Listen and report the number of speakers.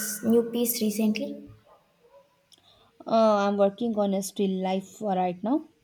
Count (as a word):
two